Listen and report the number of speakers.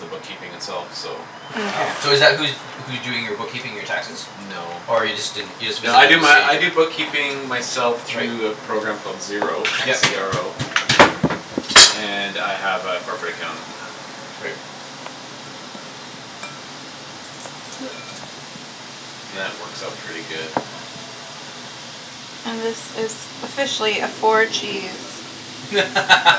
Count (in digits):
3